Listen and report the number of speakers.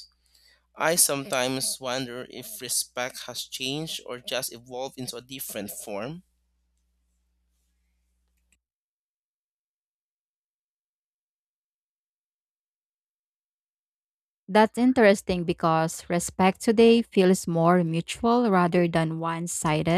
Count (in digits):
2